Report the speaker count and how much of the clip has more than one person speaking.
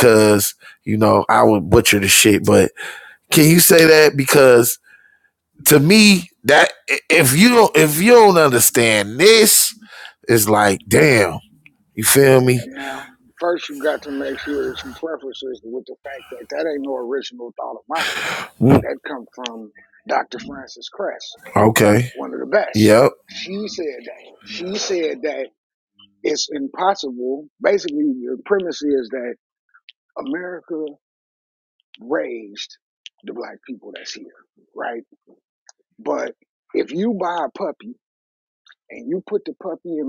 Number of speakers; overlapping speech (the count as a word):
two, about 1%